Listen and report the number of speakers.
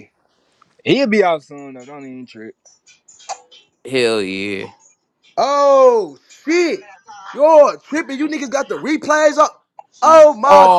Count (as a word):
three